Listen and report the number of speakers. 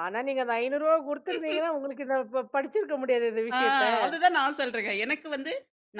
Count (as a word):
two